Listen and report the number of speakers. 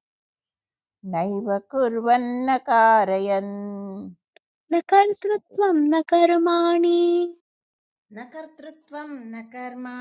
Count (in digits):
3